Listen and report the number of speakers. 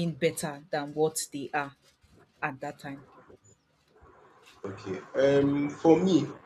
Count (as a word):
two